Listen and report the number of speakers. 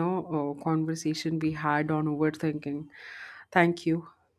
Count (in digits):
1